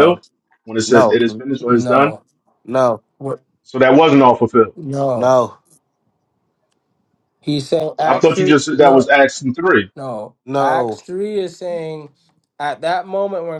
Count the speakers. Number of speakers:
3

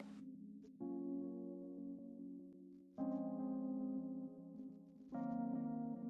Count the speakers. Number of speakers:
0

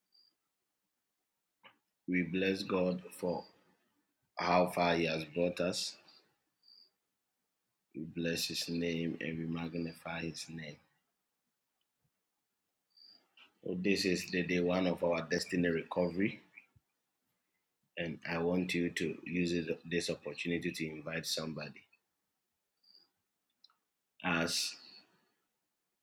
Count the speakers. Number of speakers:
1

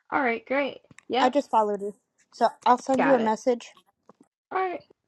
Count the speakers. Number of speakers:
2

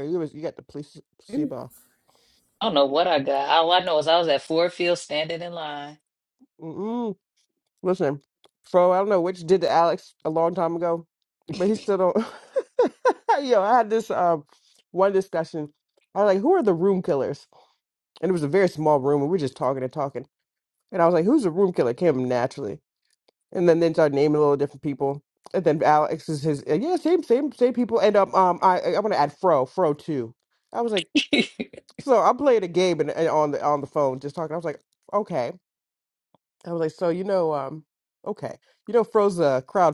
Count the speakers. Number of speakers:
2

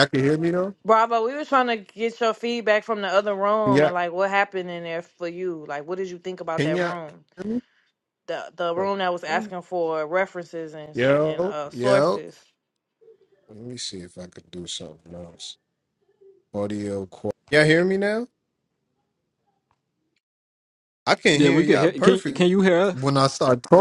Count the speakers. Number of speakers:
3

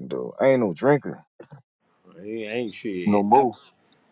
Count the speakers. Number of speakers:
2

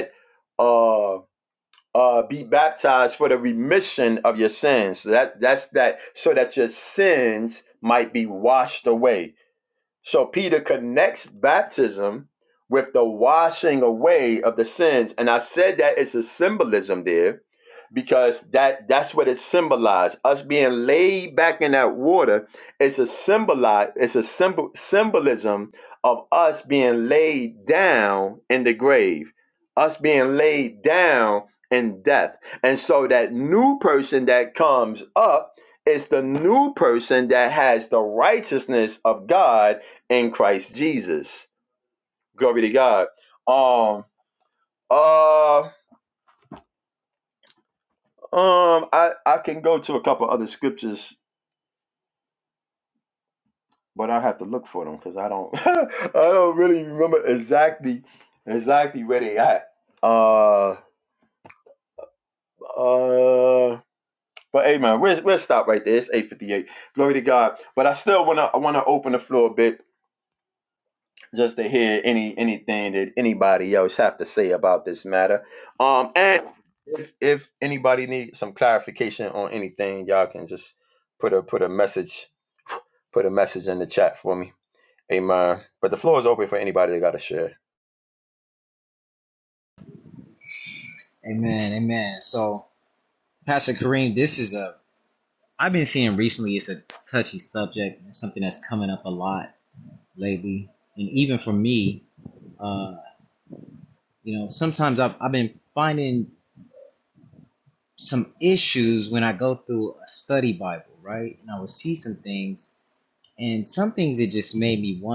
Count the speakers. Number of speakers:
2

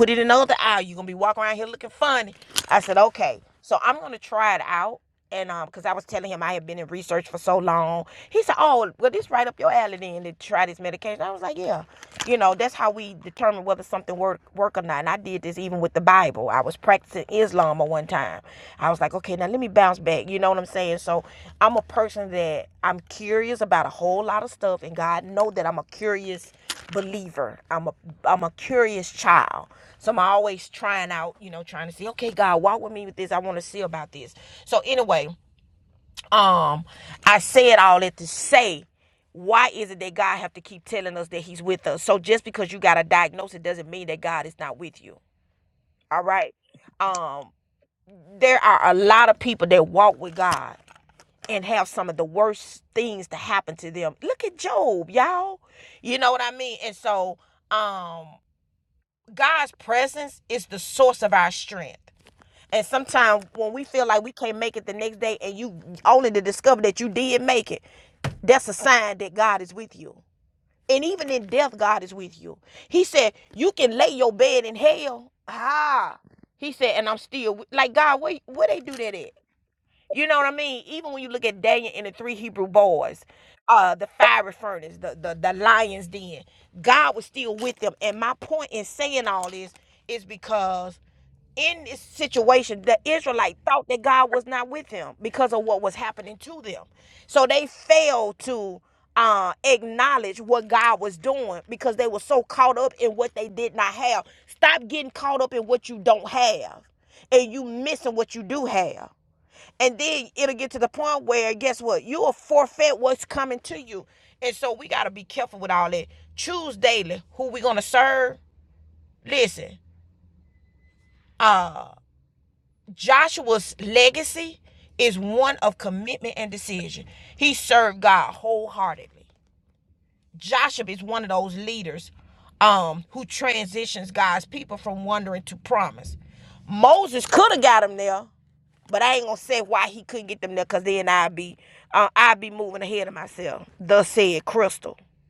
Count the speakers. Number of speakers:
1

